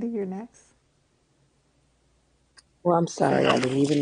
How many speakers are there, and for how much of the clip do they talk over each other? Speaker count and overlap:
2, about 13%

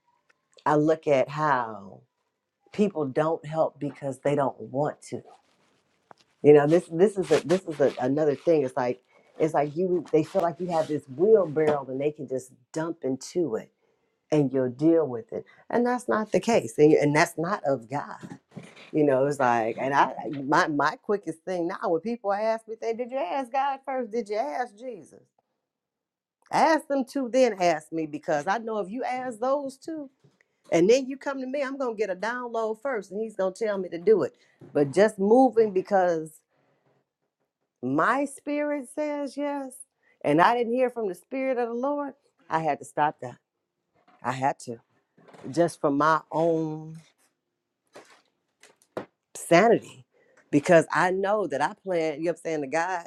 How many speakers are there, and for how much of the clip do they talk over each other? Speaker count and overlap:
1, no overlap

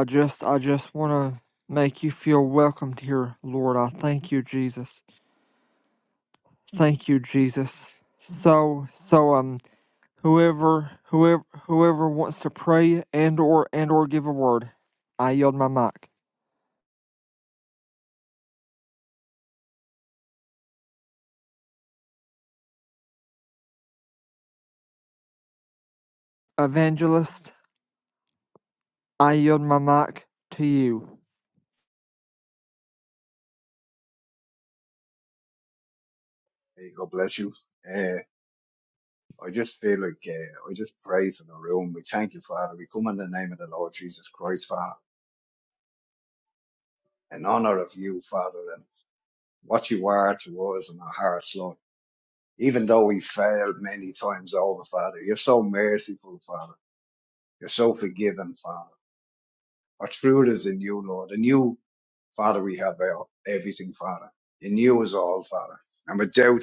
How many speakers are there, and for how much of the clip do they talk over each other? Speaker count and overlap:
2, no overlap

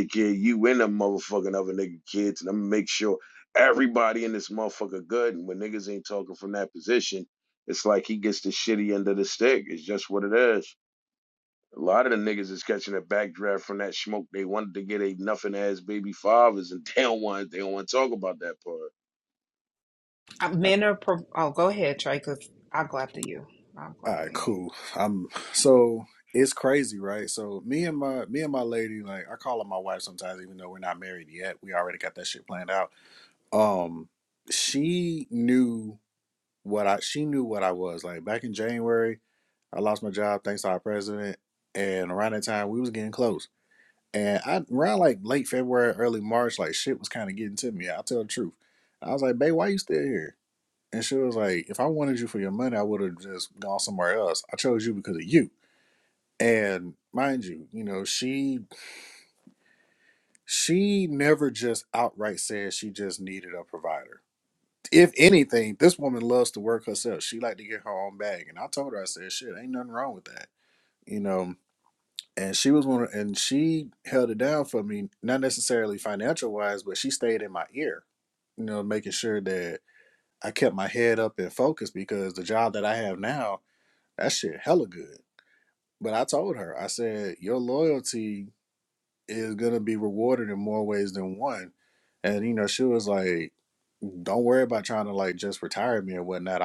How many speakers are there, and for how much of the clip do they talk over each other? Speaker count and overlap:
3, under 1%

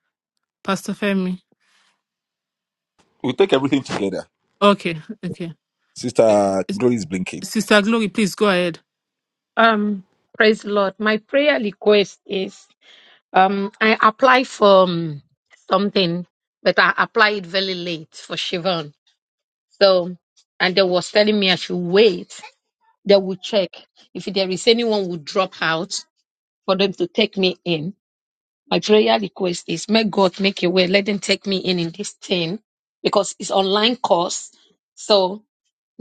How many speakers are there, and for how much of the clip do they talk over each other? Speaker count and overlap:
3, under 1%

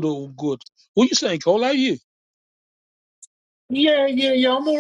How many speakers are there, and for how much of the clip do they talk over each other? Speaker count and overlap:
2, no overlap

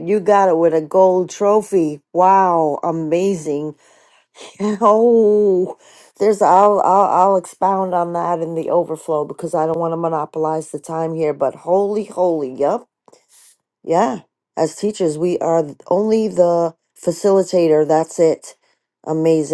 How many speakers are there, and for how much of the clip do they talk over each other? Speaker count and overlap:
1, no overlap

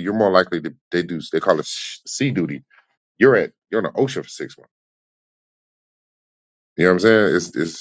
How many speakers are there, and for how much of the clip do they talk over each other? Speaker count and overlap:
1, no overlap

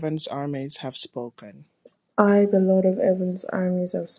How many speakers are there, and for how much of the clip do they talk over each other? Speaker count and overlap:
2, no overlap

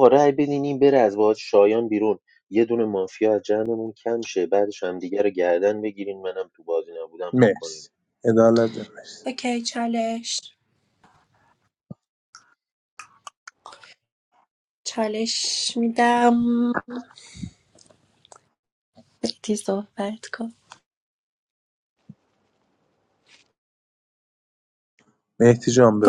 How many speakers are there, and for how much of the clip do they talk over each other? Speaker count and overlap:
3, about 1%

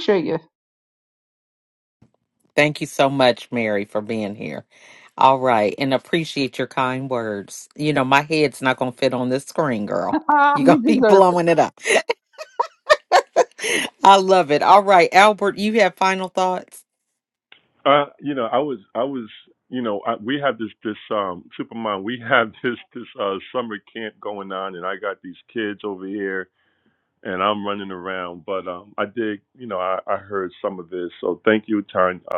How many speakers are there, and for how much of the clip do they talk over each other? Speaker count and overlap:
3, about 2%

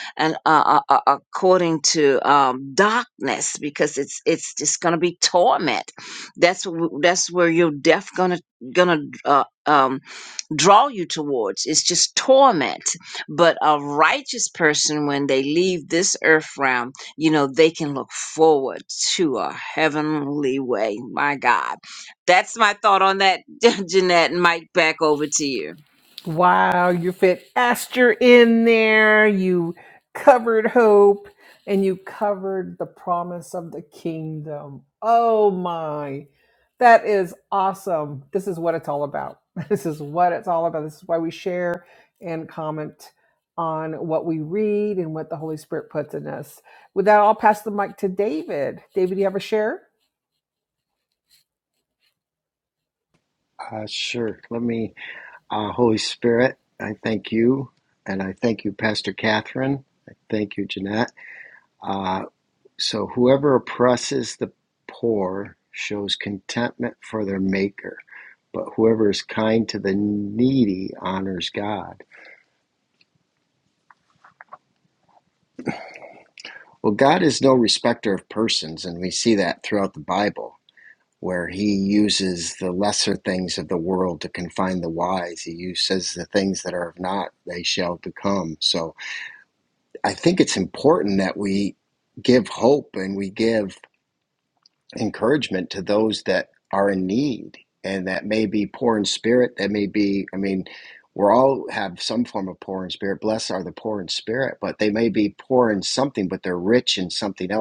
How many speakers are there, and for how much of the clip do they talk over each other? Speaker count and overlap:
3, no overlap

